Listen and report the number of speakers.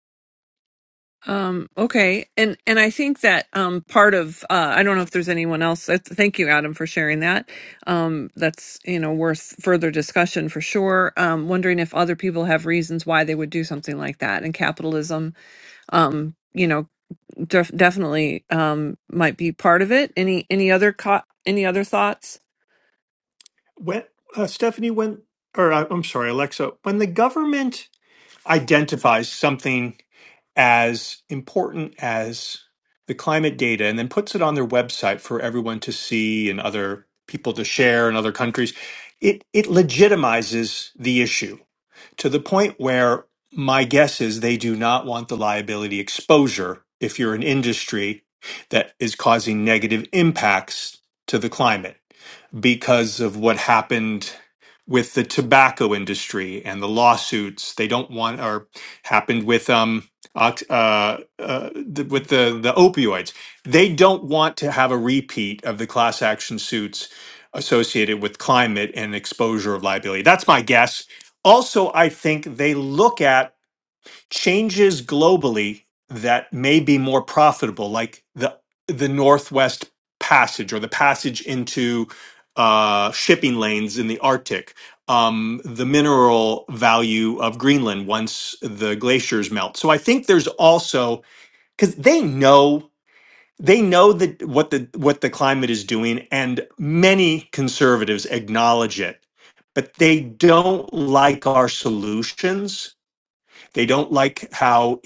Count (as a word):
two